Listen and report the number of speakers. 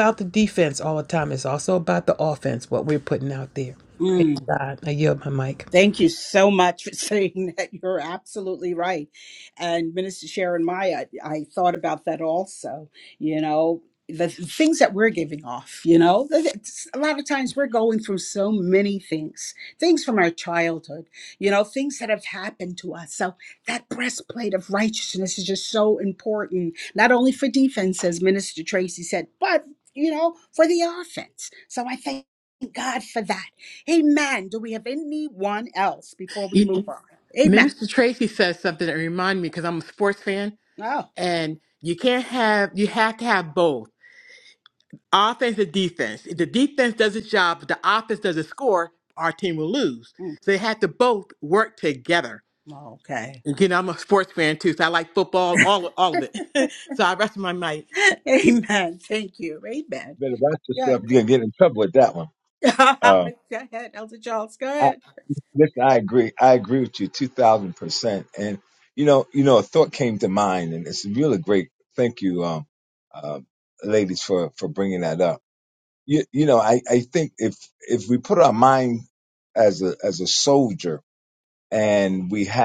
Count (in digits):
4